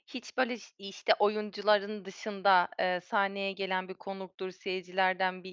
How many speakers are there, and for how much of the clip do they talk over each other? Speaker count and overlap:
one, no overlap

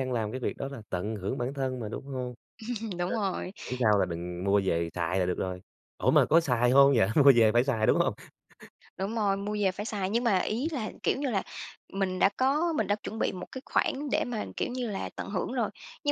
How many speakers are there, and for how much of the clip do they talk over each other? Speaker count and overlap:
two, about 1%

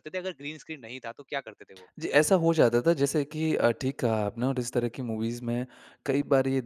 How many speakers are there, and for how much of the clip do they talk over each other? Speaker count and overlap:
two, no overlap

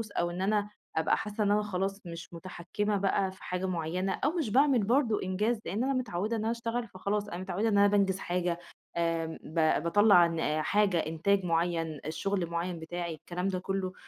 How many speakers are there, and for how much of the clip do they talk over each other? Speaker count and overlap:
one, no overlap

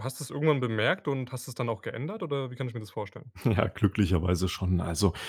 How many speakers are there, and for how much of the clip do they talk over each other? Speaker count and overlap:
two, no overlap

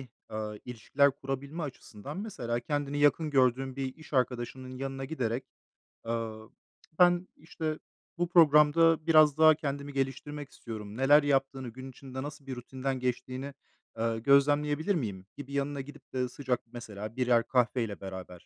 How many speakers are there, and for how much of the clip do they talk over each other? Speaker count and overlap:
one, no overlap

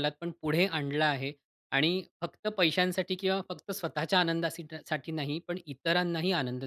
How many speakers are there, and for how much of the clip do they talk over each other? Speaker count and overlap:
one, no overlap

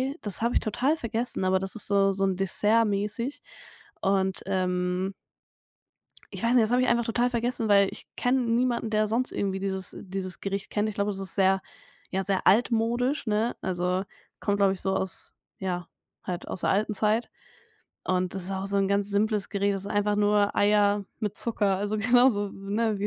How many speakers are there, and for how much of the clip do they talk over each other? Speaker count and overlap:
one, no overlap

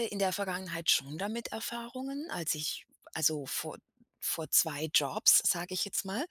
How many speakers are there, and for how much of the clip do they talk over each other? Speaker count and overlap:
one, no overlap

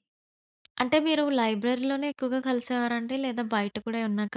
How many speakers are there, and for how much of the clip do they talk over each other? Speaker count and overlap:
one, no overlap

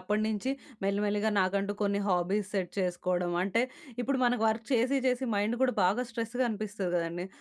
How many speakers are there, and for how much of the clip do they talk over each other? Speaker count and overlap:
one, no overlap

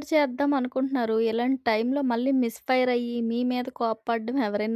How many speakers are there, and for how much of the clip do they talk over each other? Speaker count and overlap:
one, no overlap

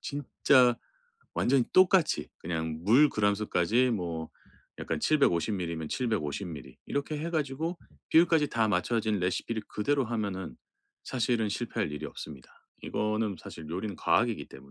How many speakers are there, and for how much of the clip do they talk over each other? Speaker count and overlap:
one, no overlap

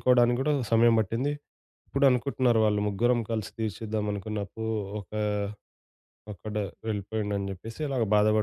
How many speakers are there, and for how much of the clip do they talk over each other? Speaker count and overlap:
one, no overlap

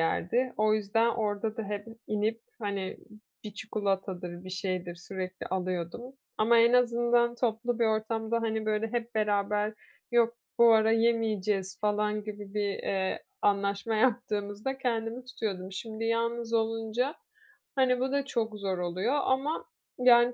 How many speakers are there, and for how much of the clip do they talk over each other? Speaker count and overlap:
one, no overlap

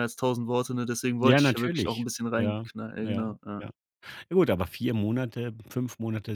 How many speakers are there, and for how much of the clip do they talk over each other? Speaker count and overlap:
two, about 28%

